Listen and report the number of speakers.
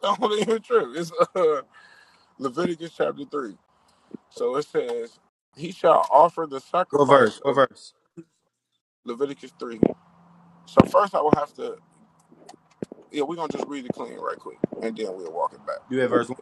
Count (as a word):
two